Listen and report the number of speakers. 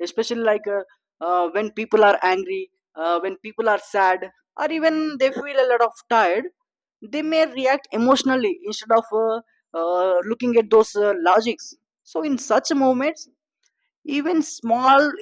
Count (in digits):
1